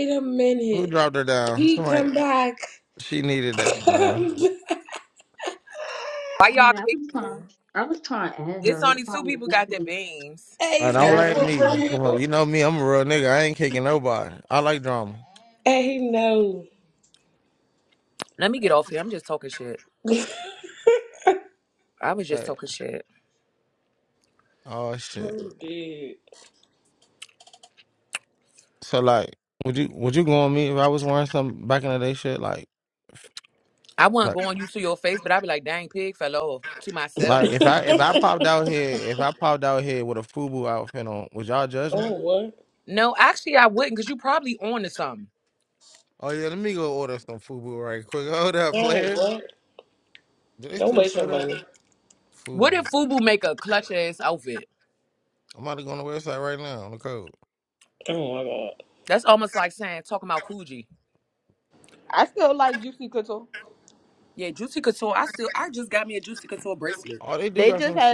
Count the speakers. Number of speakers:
five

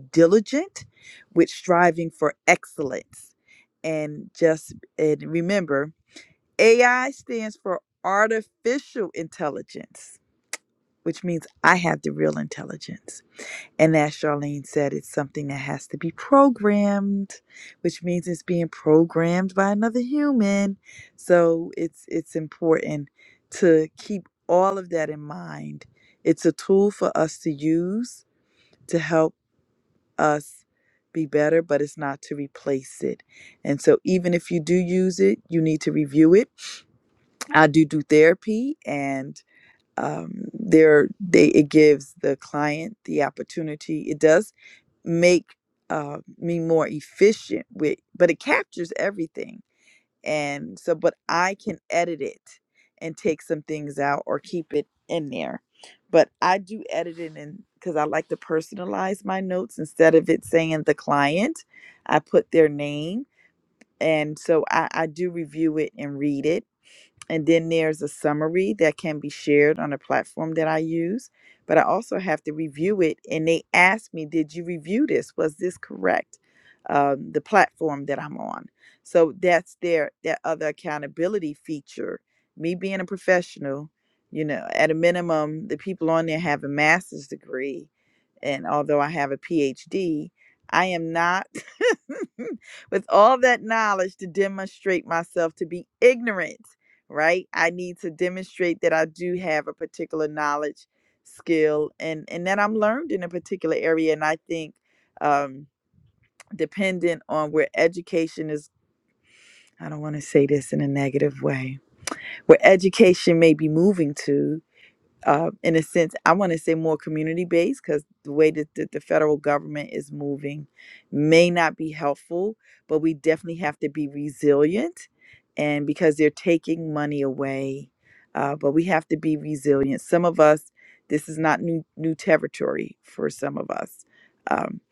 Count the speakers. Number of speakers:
one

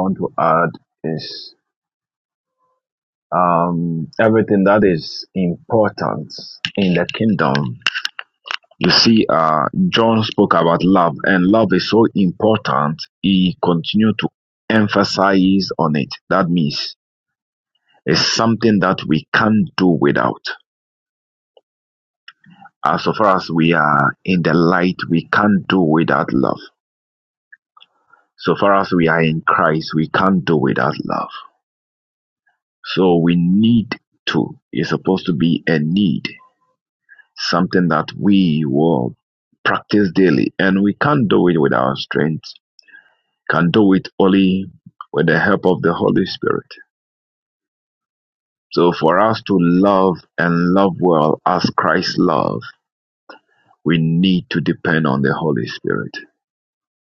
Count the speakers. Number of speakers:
one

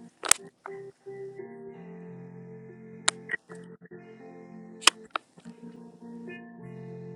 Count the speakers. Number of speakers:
zero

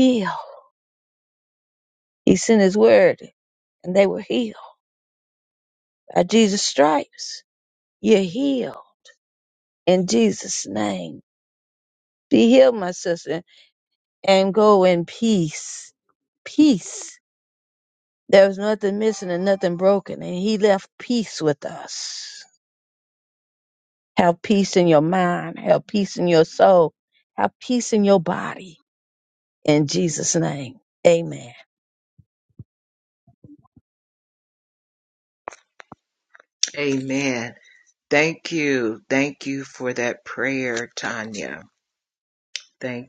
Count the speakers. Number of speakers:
two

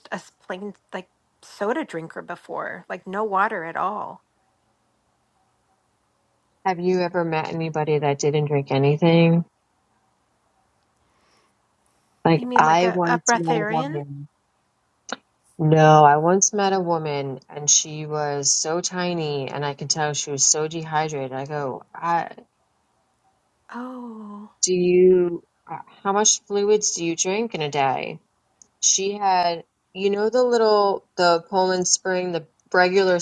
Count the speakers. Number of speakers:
two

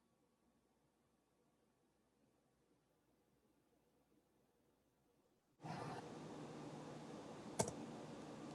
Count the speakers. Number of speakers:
zero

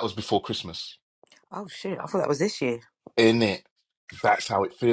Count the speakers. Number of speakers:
two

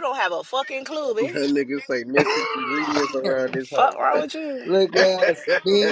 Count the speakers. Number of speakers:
three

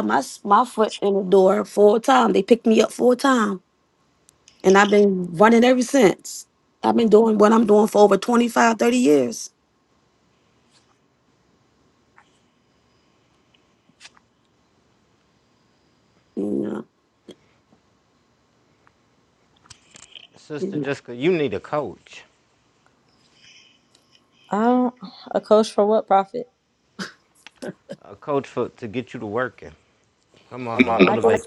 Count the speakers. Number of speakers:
three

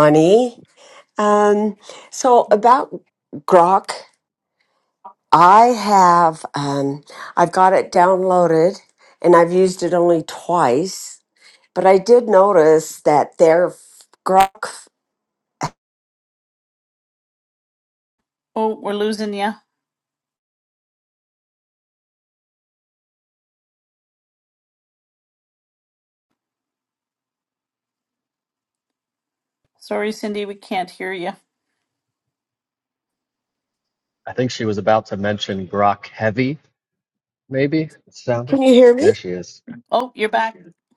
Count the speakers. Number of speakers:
three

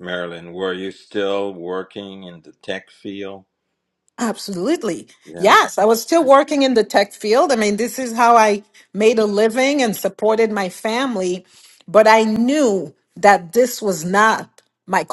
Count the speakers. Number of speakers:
two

